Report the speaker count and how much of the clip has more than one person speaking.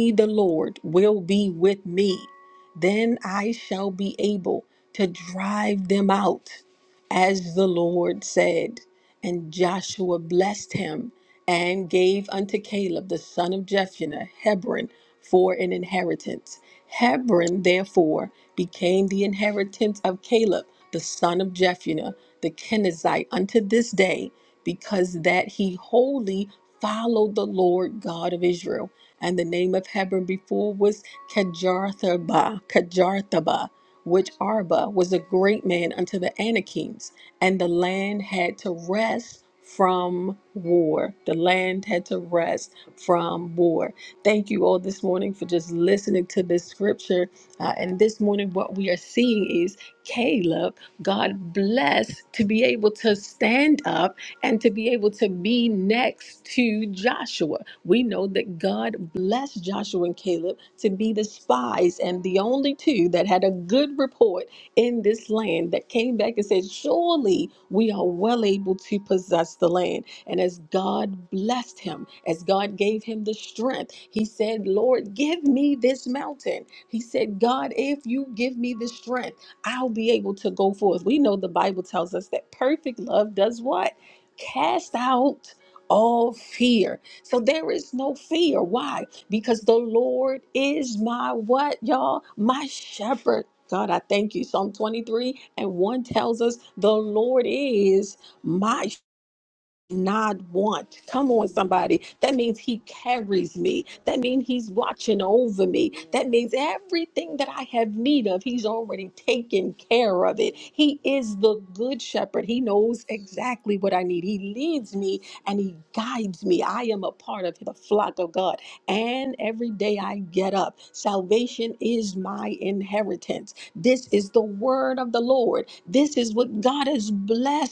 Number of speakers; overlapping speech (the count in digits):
1, no overlap